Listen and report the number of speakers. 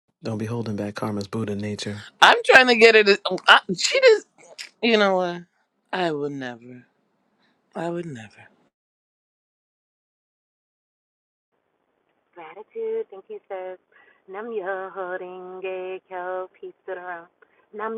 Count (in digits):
3